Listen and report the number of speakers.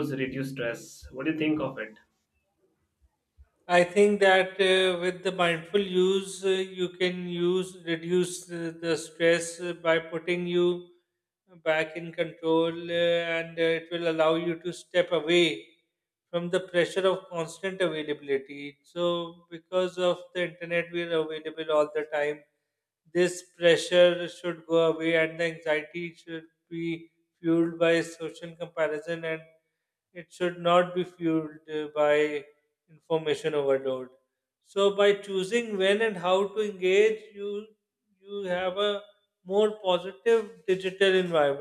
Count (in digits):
2